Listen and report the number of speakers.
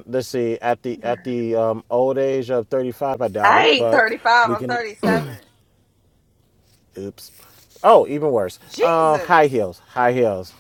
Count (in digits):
2